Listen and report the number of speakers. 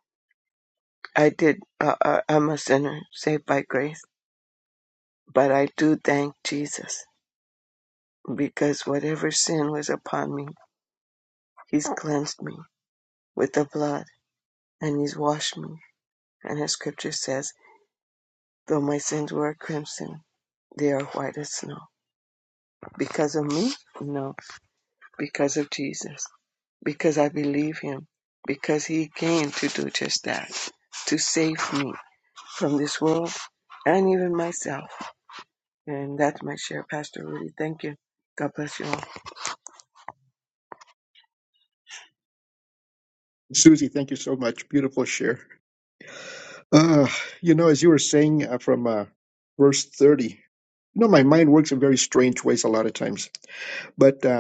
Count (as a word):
two